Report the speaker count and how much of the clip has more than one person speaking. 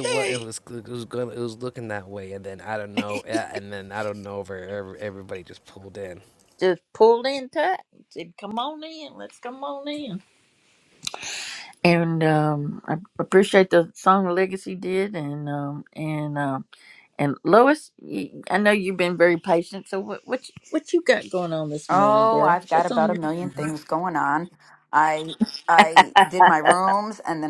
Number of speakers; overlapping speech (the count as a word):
three, about 8%